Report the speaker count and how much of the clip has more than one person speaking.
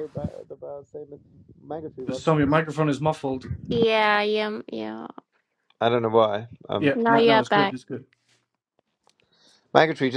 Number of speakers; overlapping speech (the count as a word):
three, about 13%